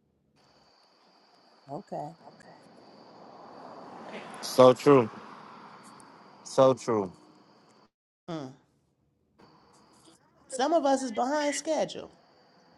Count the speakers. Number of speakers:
2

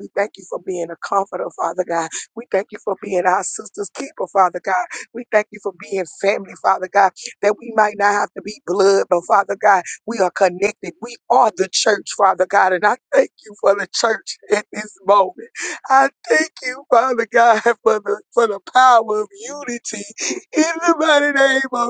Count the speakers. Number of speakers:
1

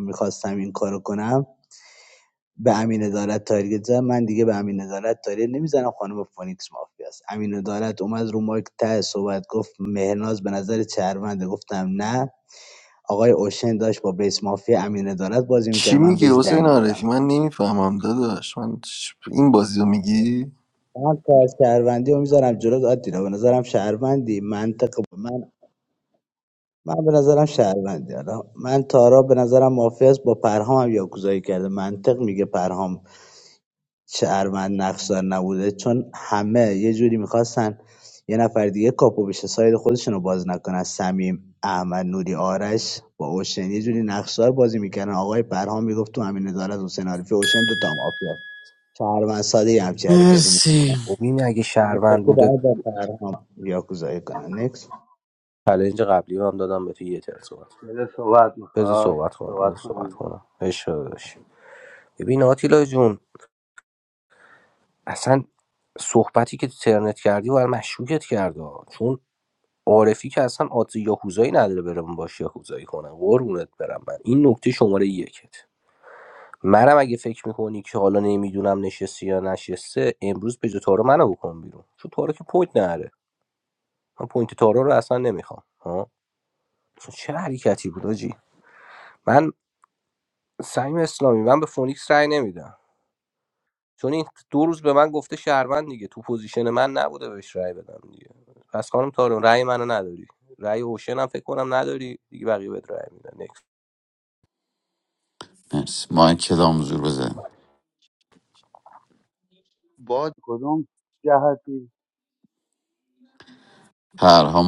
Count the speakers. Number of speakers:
5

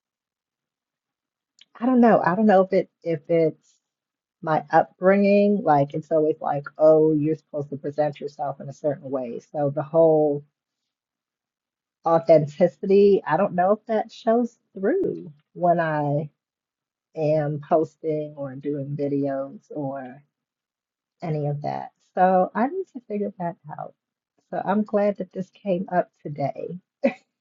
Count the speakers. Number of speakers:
1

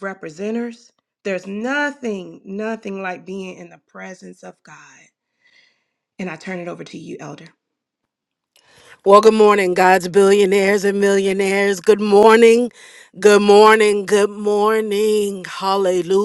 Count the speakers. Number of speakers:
2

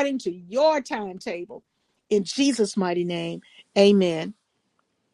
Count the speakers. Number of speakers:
1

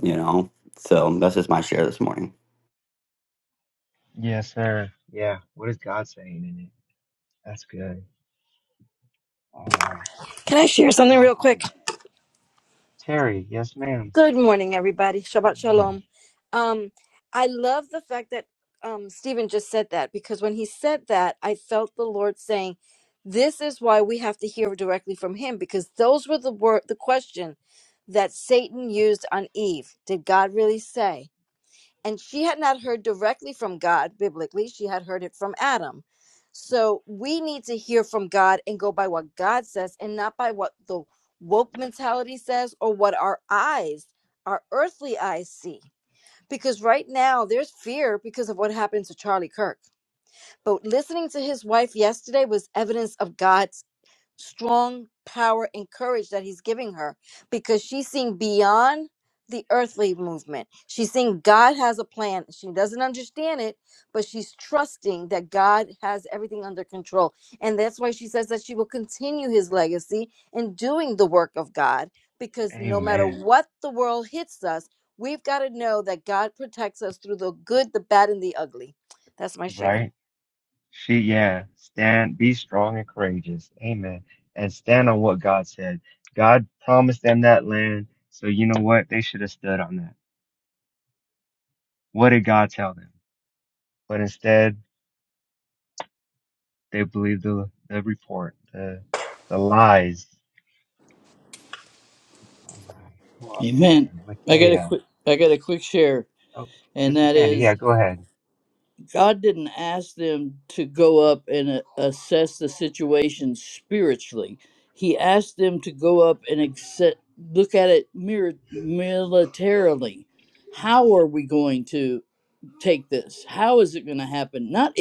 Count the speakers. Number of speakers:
4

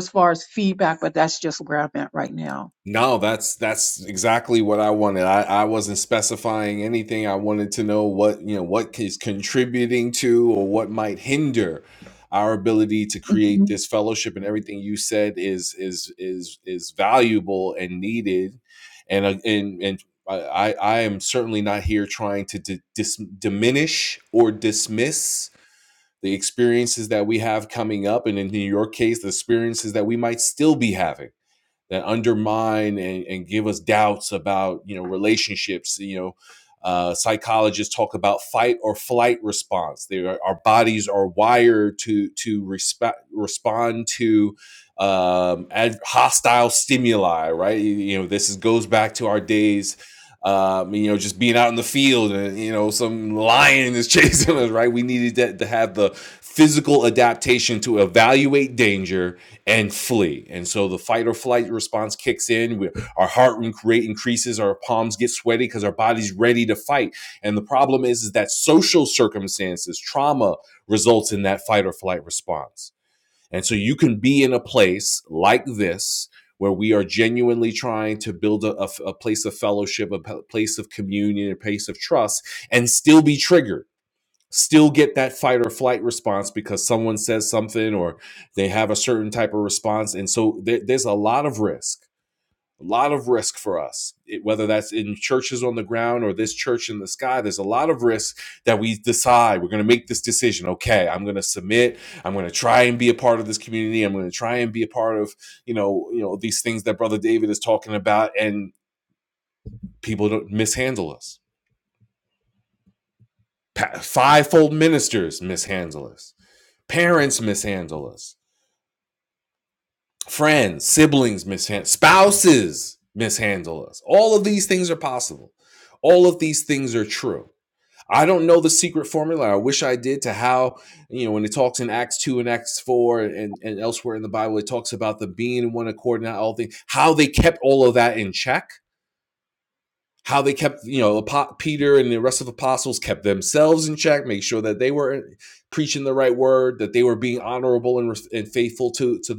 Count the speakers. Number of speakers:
2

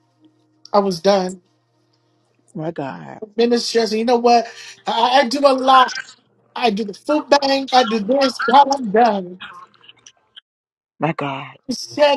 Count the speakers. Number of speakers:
2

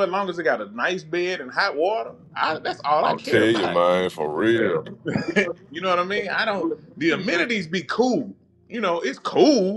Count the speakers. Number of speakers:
2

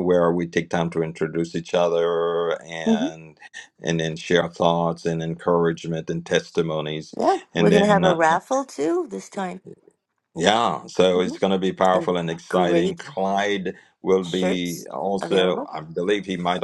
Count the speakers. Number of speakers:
2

